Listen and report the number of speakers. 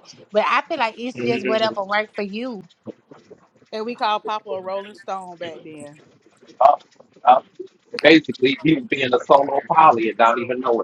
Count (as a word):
three